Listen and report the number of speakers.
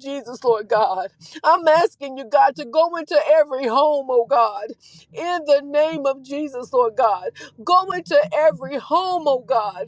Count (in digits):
1